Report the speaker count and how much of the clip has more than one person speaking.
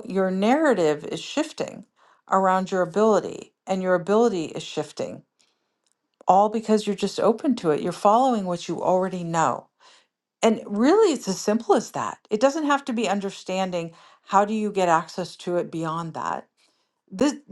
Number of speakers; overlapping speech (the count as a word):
one, no overlap